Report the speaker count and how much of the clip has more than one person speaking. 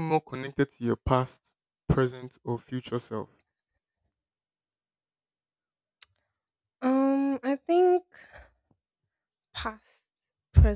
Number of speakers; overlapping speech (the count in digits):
2, no overlap